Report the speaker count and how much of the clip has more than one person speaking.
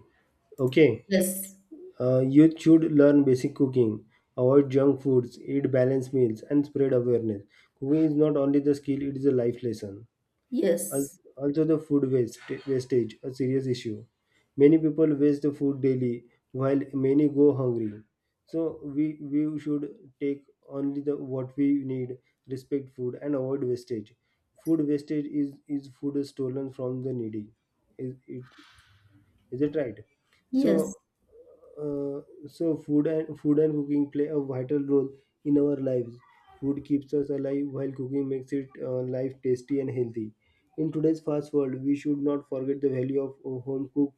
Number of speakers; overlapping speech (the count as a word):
two, about 1%